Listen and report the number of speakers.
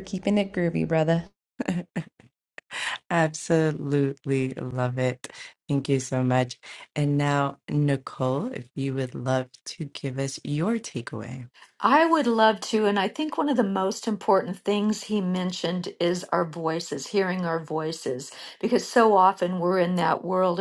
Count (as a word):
three